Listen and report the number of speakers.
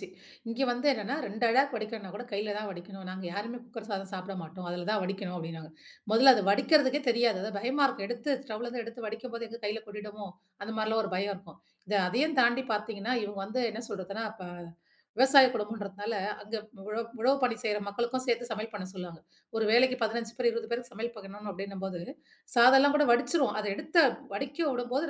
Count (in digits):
1